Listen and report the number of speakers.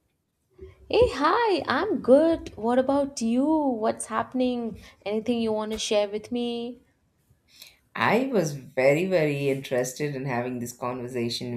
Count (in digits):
2